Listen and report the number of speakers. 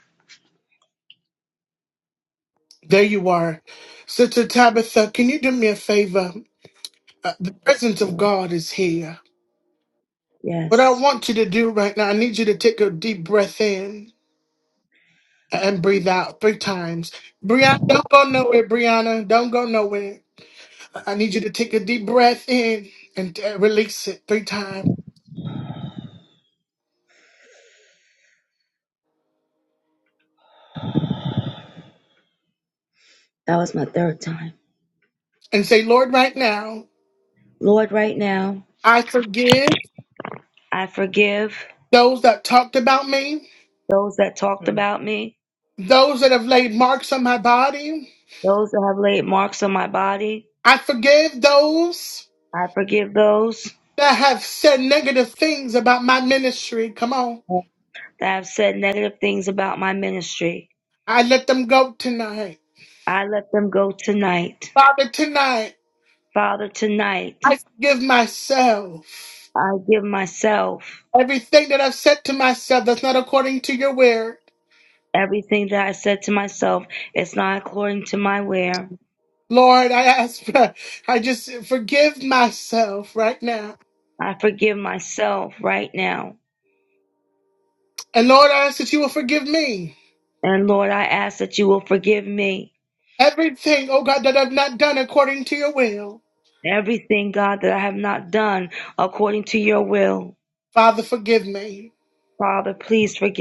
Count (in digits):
2